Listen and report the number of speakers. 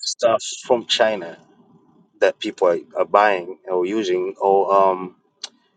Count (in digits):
1